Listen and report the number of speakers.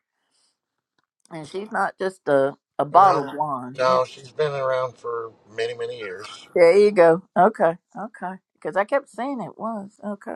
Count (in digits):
2